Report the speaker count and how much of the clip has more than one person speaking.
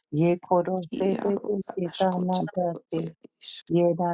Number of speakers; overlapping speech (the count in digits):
2, about 38%